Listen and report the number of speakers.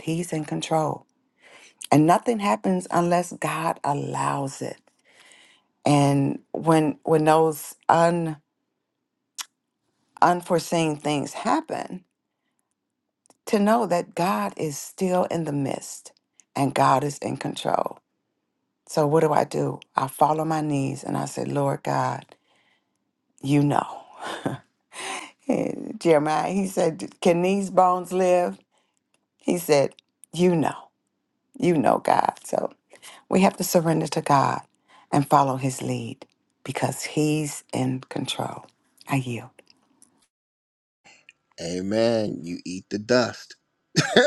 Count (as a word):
two